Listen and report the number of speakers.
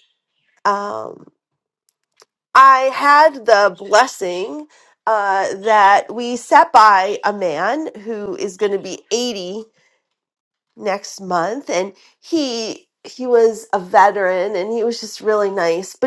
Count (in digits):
1